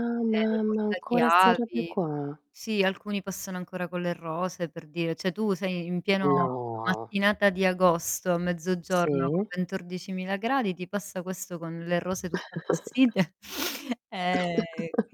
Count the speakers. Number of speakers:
2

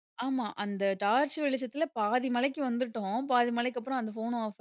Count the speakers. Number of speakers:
1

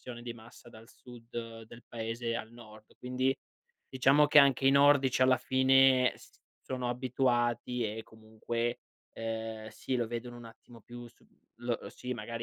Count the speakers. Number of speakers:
1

